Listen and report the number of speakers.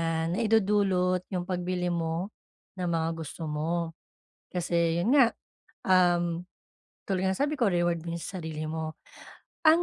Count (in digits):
1